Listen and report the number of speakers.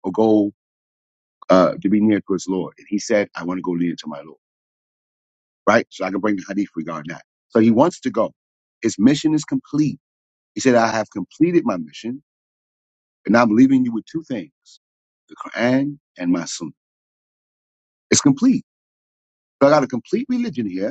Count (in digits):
1